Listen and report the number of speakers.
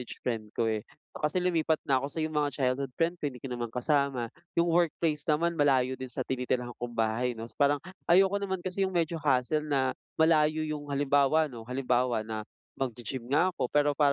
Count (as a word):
one